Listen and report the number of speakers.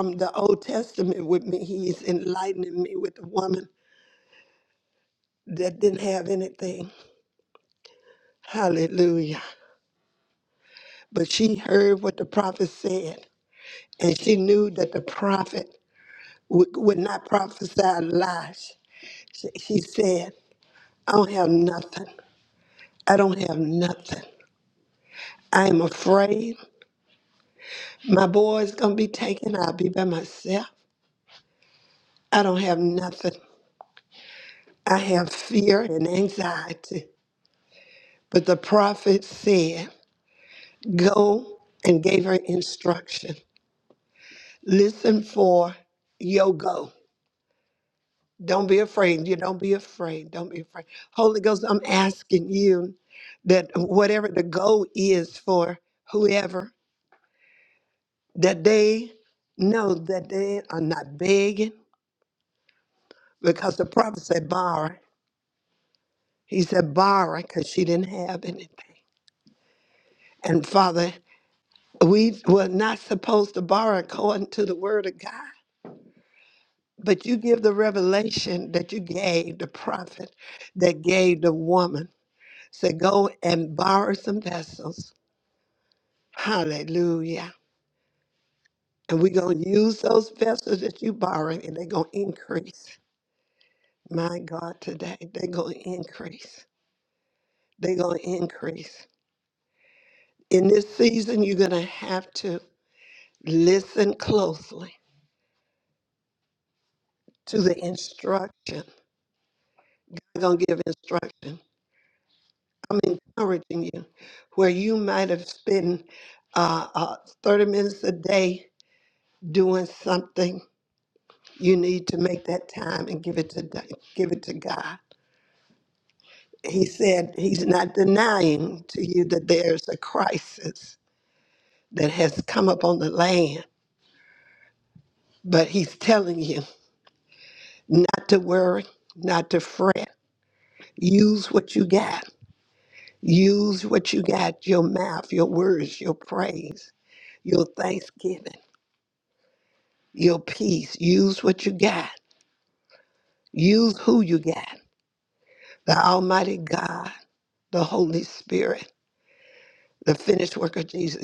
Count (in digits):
1